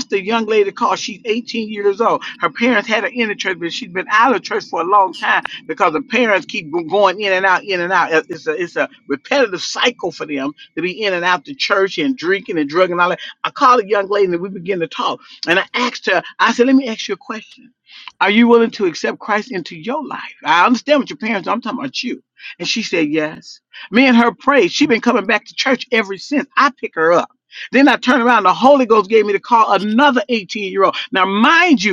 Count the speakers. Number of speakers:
one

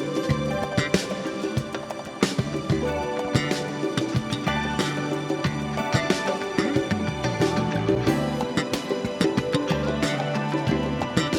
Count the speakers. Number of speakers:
zero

